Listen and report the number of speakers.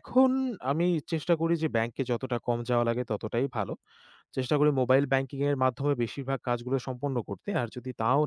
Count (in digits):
1